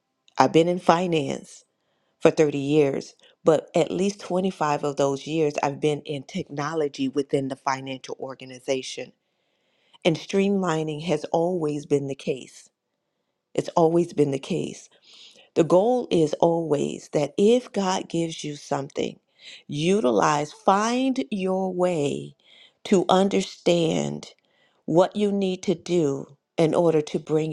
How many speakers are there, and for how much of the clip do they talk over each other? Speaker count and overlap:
1, no overlap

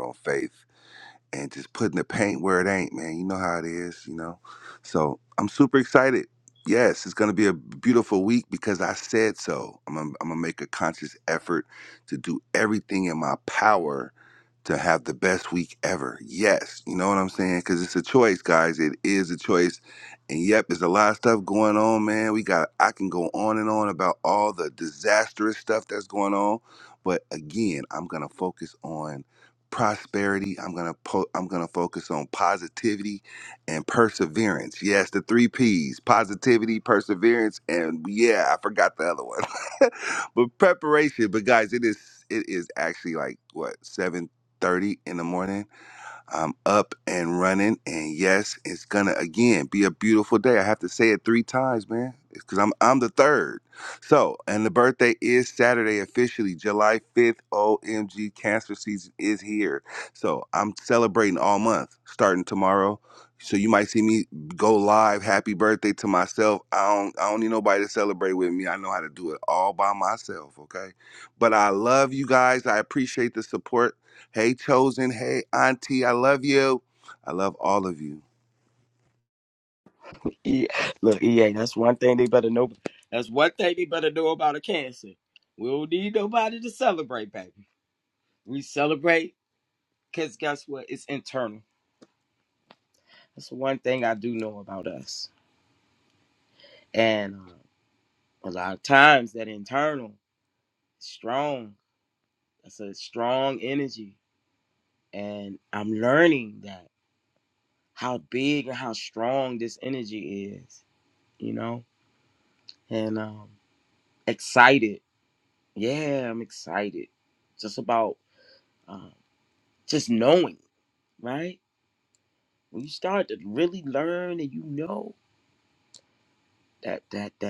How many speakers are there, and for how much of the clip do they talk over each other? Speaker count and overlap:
2, no overlap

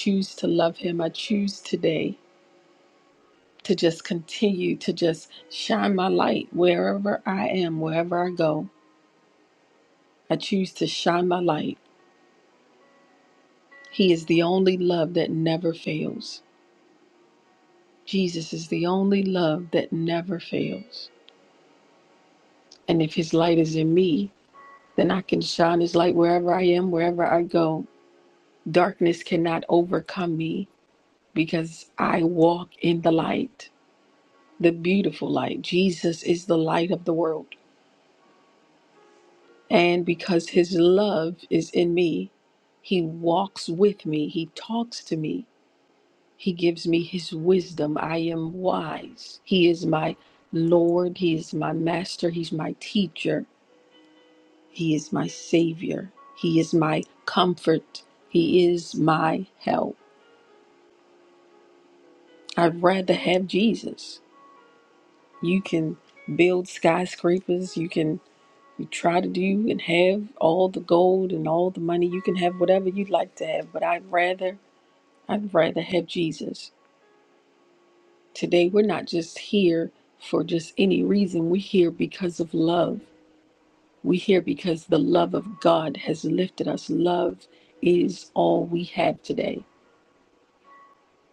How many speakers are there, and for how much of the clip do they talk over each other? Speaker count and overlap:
1, no overlap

